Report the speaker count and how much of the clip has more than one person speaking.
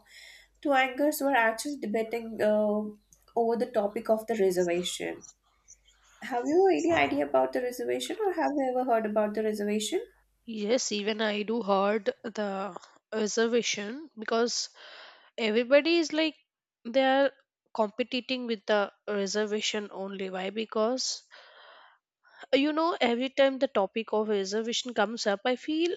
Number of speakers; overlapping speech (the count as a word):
two, no overlap